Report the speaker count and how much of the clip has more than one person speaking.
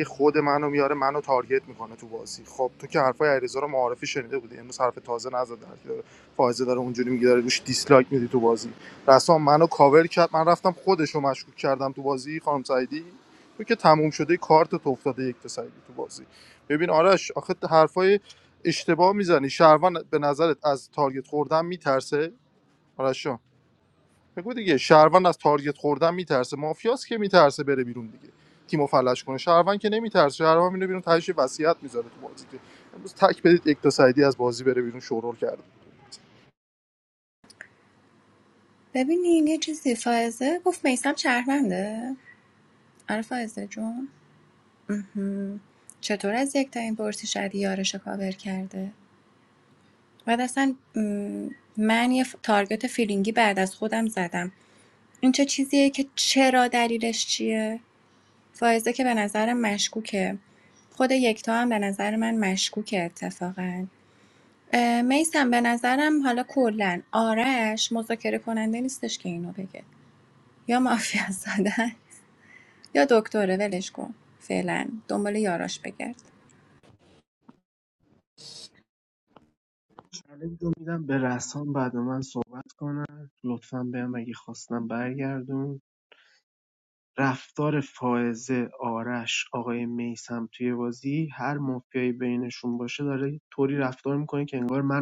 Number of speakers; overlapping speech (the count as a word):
three, no overlap